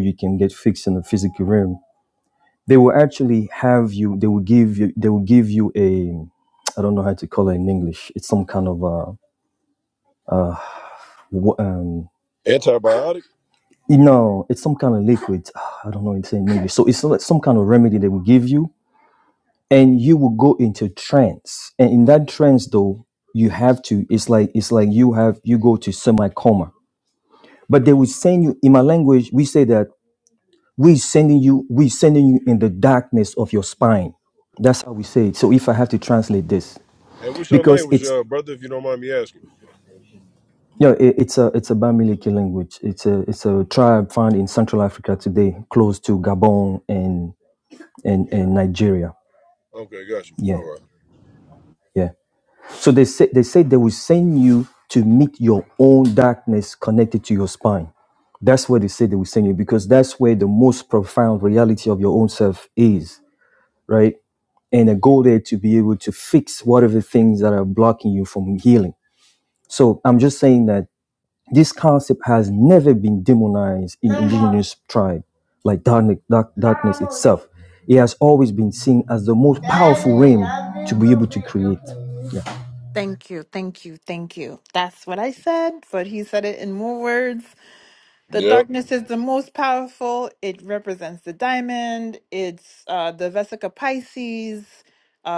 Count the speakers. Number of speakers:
3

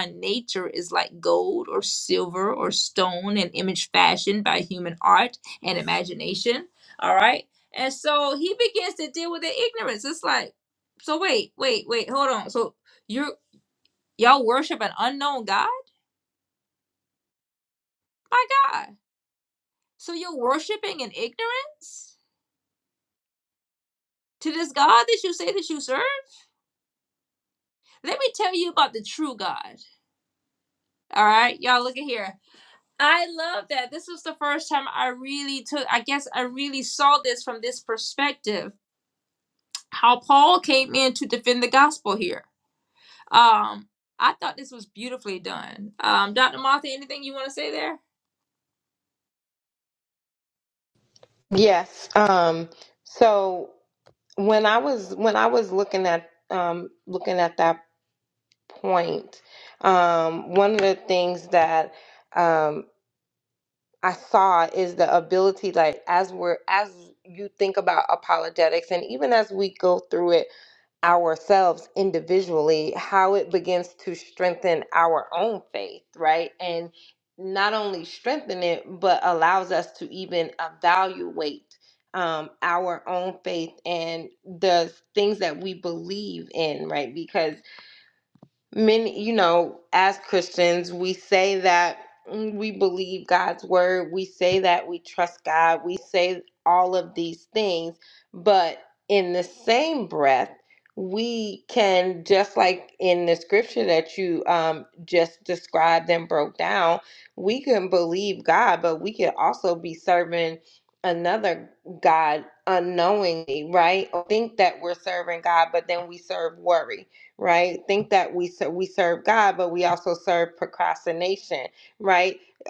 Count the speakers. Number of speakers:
2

